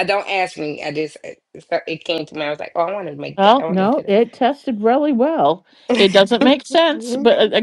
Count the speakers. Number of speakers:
2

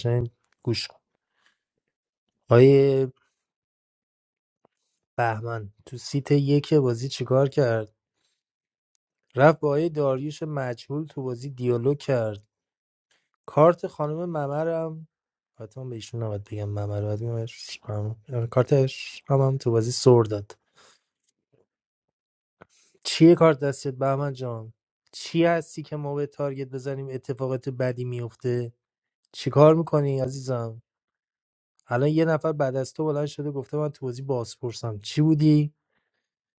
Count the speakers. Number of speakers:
1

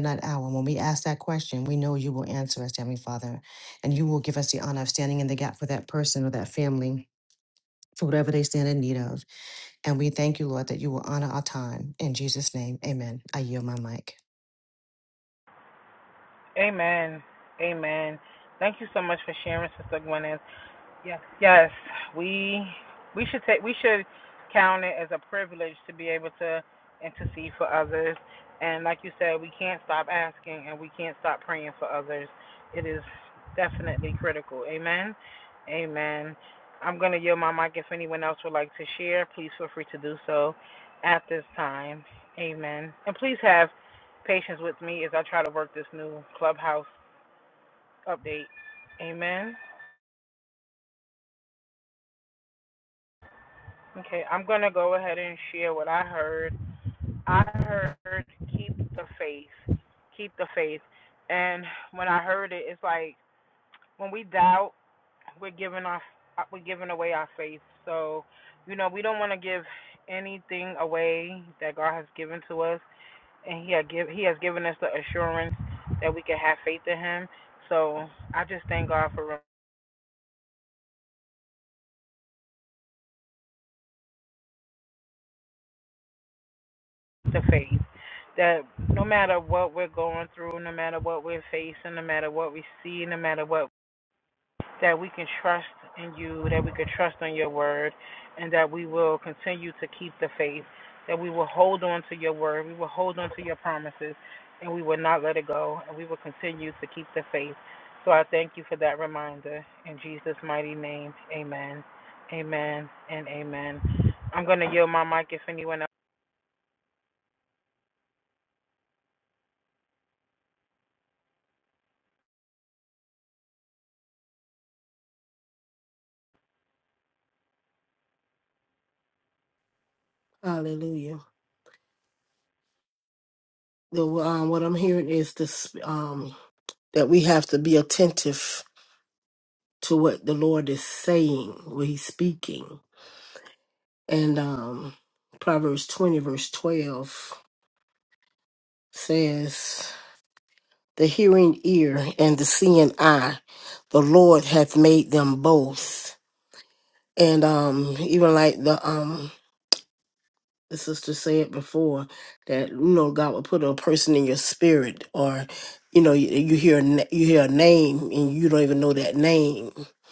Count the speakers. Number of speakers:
3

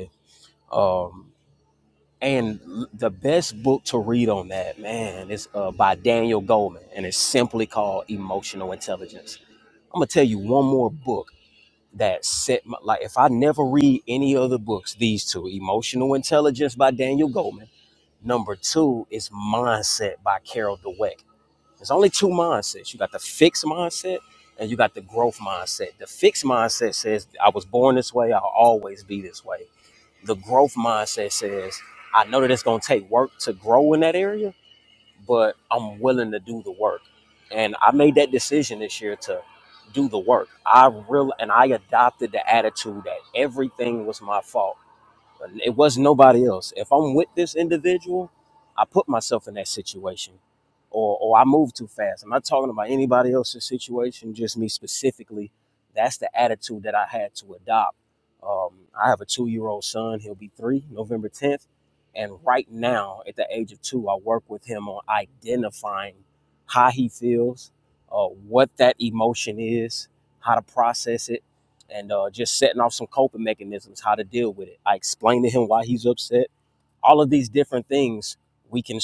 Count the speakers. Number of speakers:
1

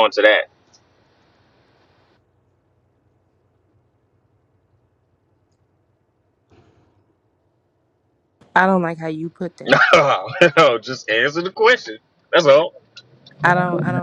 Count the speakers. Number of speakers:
2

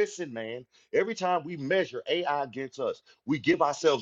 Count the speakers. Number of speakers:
1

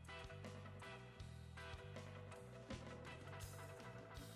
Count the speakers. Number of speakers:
0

